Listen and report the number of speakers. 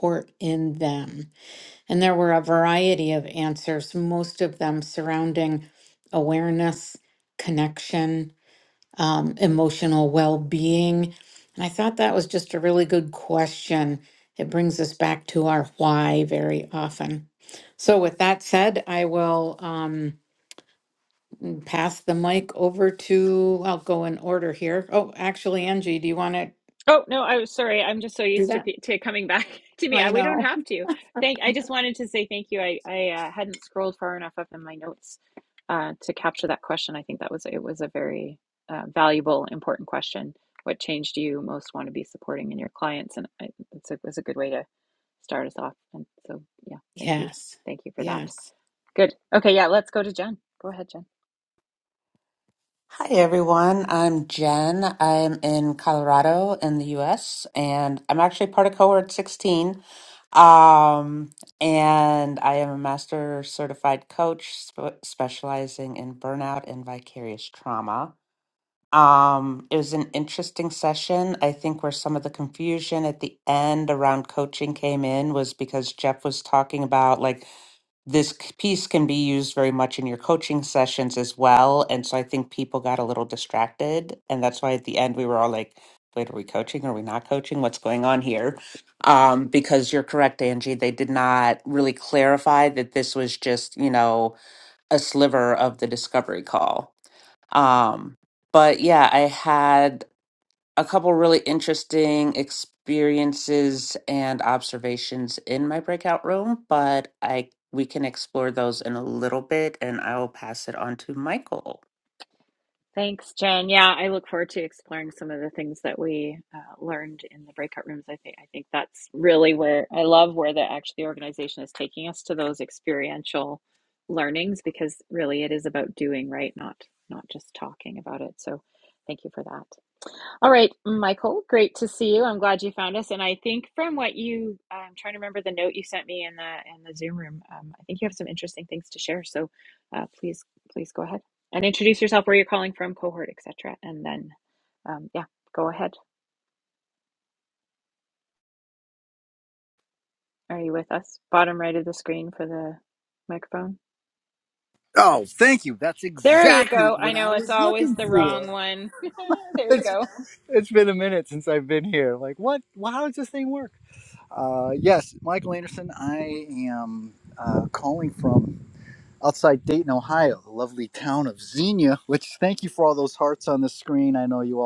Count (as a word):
four